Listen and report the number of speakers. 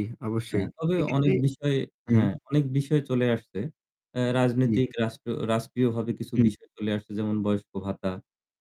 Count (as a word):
two